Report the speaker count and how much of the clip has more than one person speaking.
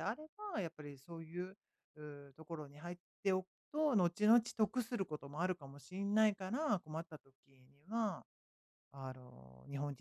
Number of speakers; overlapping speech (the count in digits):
1, no overlap